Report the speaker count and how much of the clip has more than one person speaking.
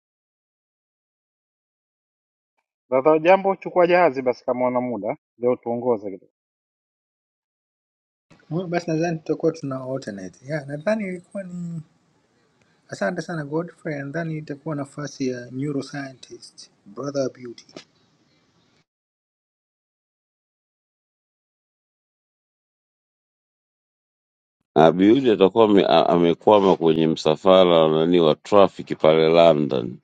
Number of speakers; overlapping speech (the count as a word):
three, no overlap